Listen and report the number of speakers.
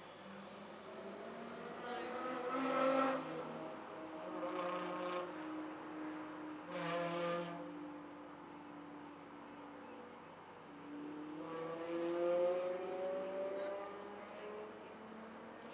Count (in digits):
2